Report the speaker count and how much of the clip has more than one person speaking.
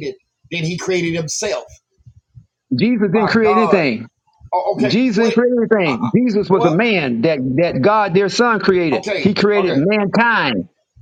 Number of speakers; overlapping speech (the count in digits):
2, about 25%